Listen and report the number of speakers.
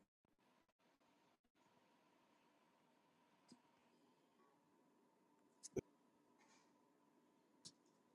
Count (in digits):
0